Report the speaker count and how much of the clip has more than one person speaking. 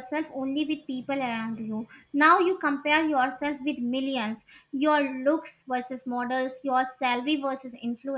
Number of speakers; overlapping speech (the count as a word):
one, no overlap